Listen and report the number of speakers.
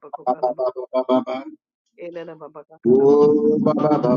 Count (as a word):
two